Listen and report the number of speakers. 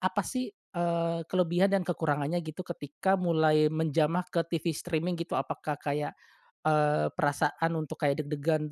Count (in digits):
1